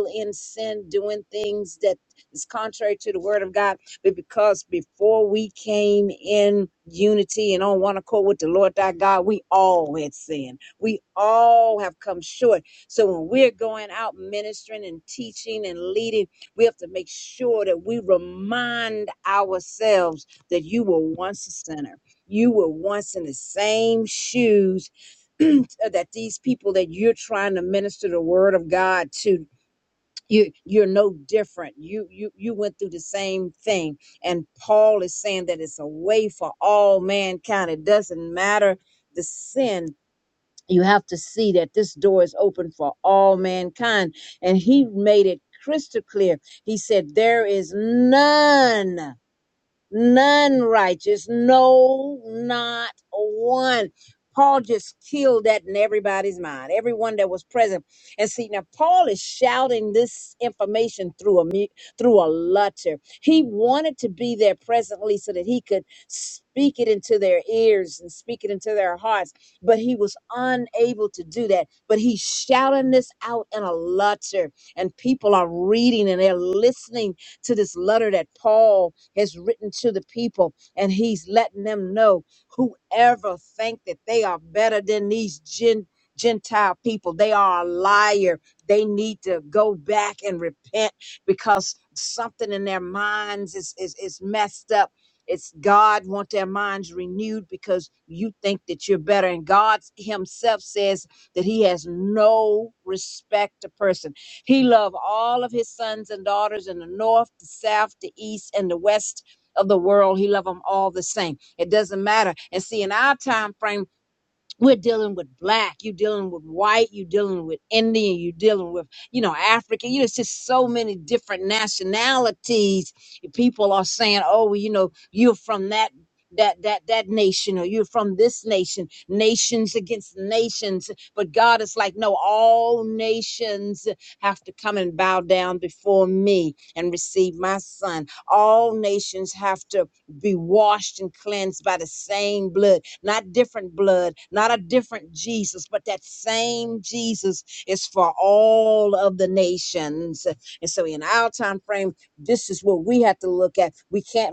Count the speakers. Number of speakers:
1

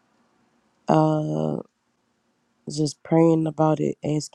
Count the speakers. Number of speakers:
1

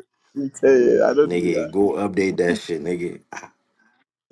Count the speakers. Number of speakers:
2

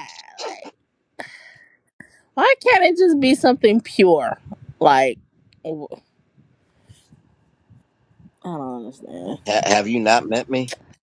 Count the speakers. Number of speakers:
2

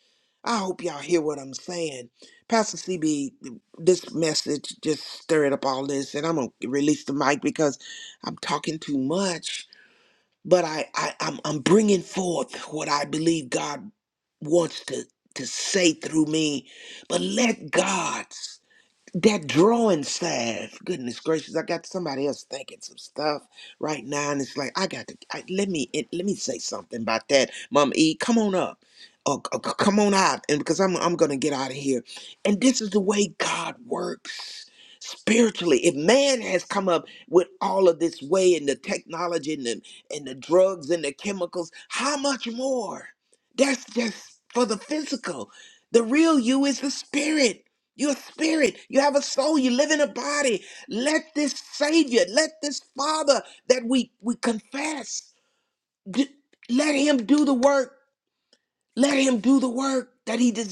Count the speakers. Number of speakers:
1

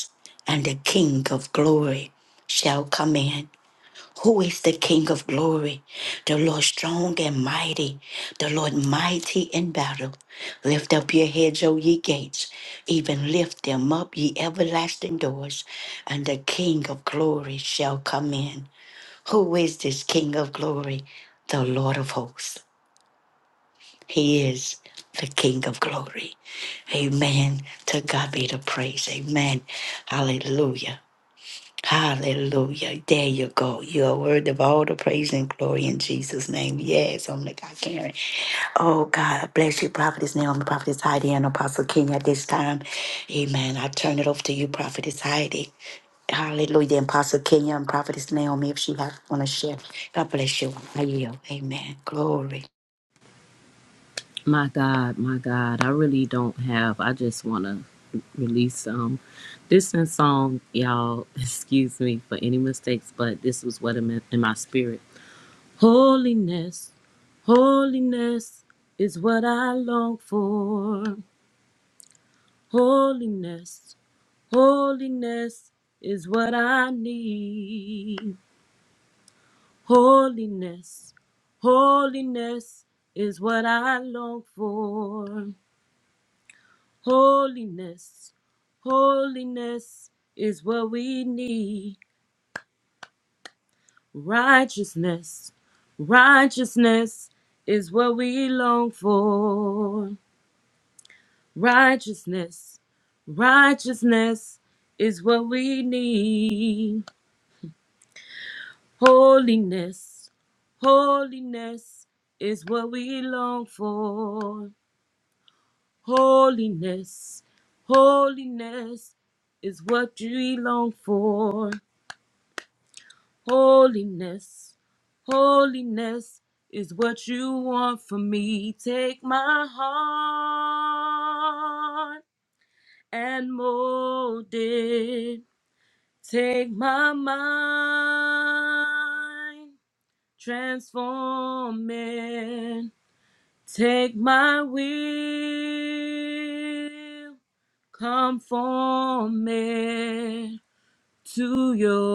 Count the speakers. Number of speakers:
2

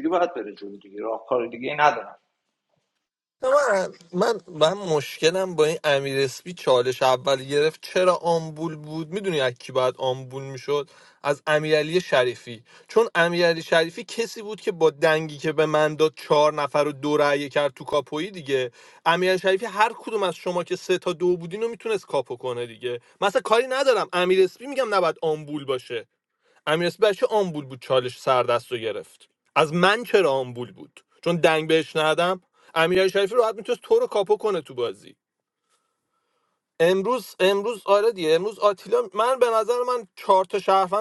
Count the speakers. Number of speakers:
2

